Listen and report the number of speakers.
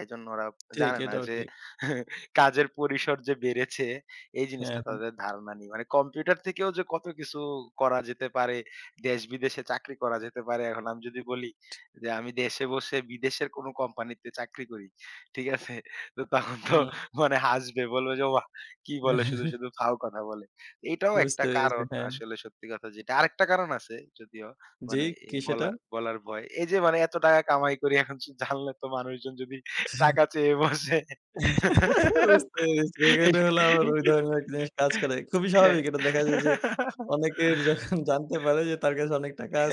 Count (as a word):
two